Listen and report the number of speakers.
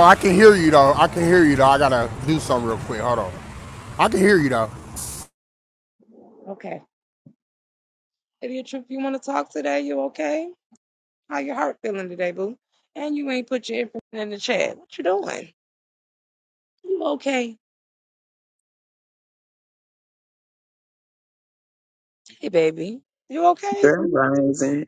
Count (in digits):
3